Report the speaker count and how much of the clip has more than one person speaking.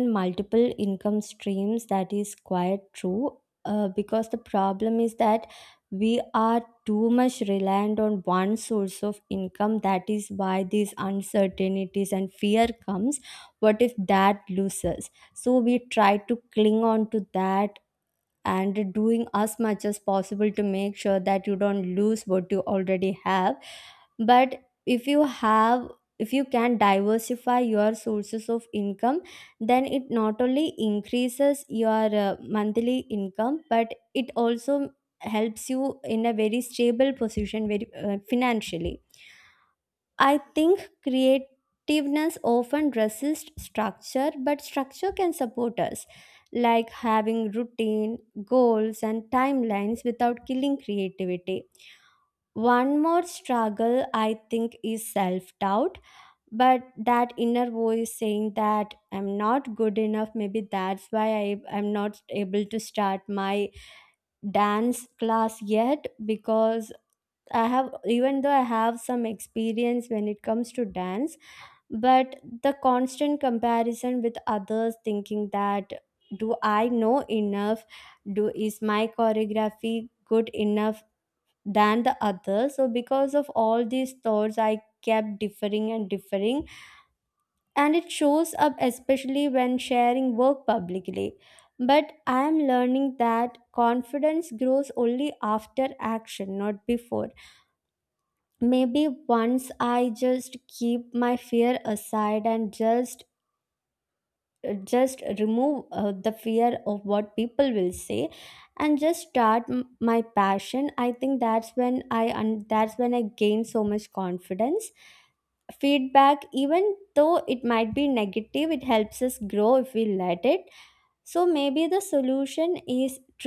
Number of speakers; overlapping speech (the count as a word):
one, no overlap